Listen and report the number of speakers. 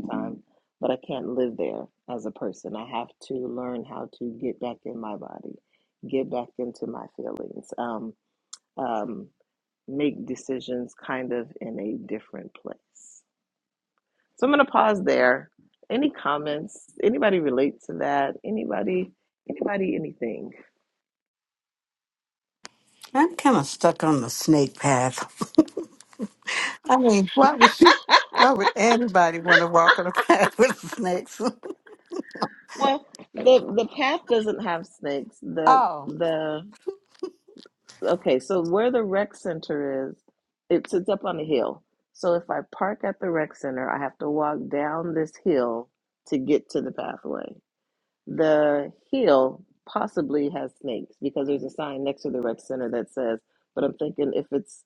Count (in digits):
2